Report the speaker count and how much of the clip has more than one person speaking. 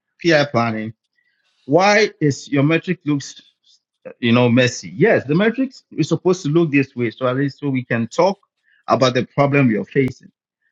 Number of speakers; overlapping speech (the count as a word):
one, no overlap